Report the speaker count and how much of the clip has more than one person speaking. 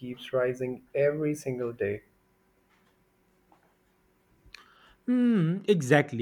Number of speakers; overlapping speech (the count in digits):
2, no overlap